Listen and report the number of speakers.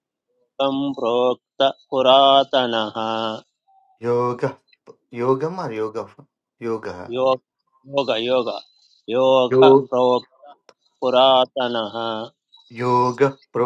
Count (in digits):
2